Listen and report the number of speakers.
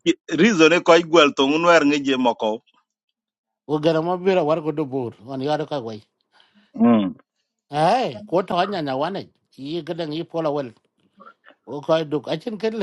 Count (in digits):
2